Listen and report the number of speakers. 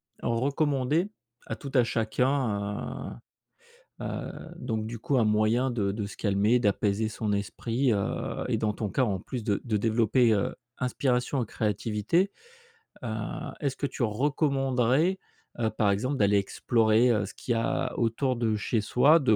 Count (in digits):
1